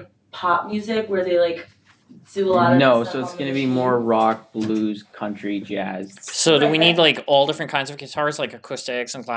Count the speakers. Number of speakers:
three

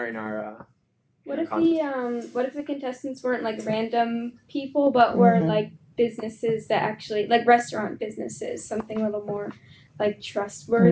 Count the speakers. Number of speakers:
two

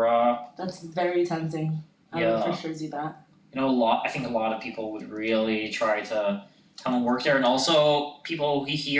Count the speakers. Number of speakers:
two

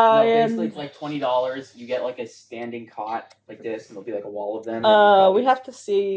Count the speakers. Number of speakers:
two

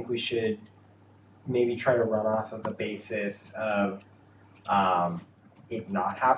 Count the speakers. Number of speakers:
one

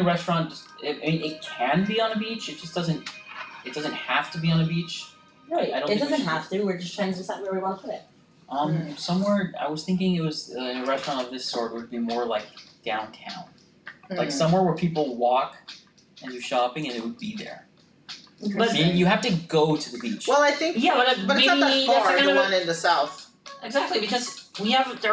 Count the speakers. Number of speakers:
four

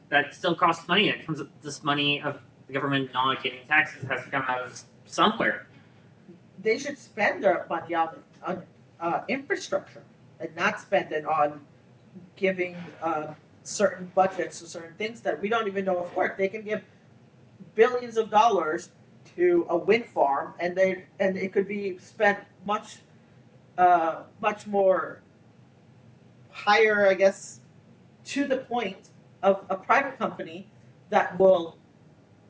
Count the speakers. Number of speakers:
two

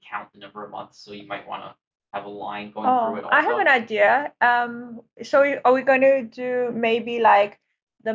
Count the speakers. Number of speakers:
two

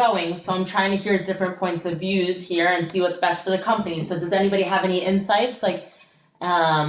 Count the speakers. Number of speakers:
one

